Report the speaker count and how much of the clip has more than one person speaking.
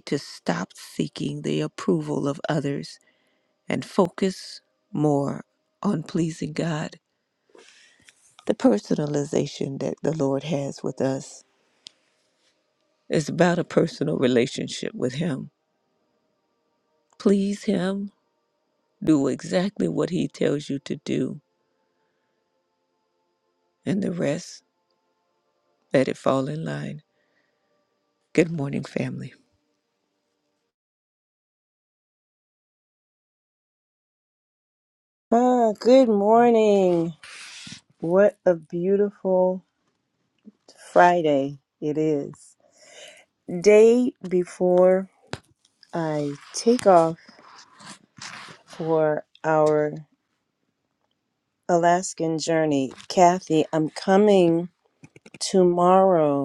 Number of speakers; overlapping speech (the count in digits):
2, no overlap